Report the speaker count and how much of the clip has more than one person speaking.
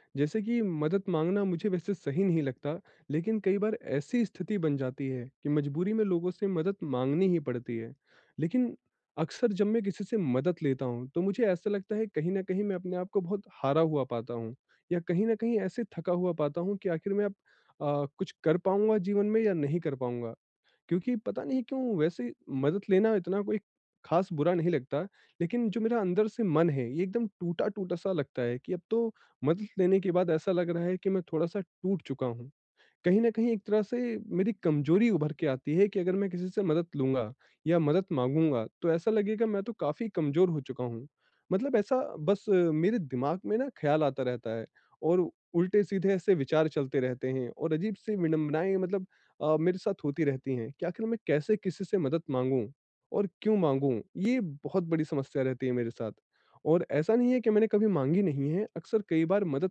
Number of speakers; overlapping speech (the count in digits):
1, no overlap